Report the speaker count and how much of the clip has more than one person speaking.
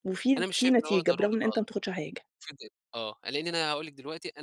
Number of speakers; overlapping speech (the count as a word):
two, about 29%